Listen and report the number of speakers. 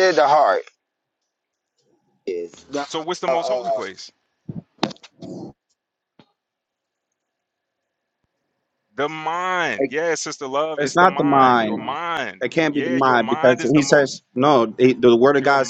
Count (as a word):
three